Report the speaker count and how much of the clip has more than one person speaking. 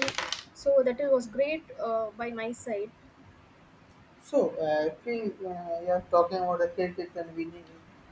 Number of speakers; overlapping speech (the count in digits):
2, no overlap